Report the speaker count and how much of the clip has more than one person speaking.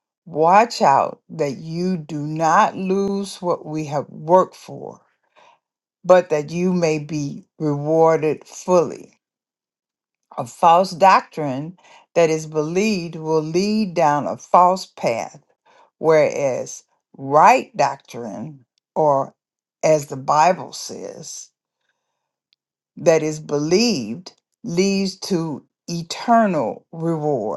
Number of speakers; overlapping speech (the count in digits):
1, no overlap